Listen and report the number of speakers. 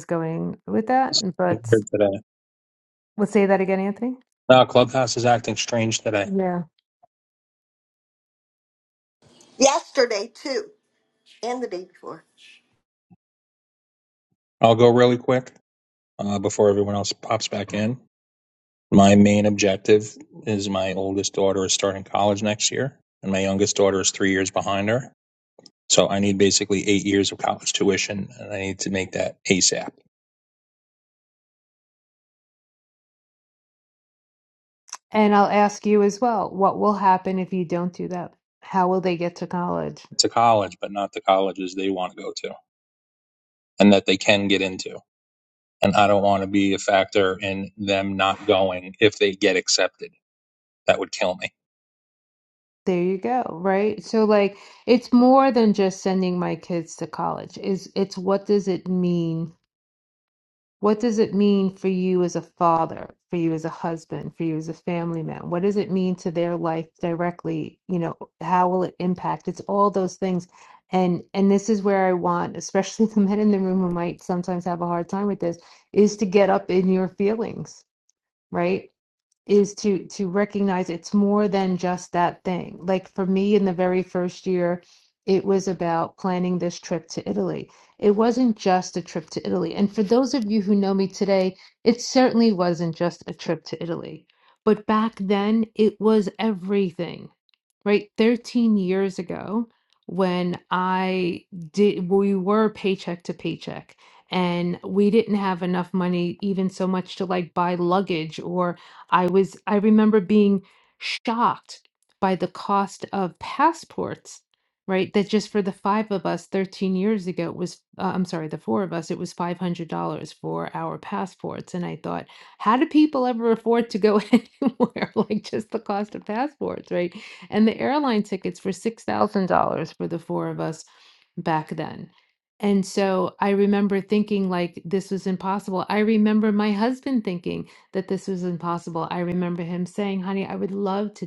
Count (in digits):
3